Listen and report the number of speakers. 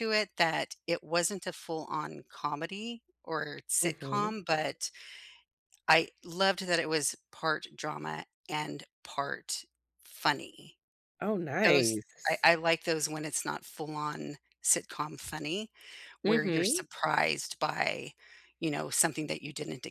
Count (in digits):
2